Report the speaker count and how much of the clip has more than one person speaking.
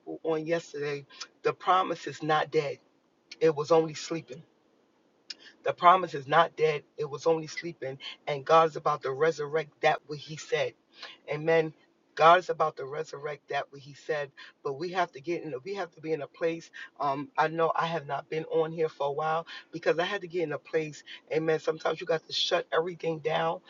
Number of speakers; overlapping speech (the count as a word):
one, no overlap